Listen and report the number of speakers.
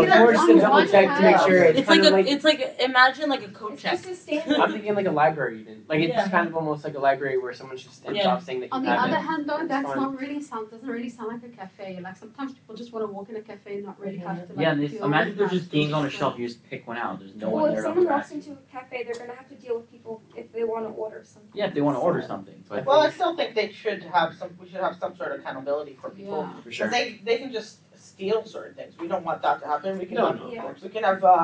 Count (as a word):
six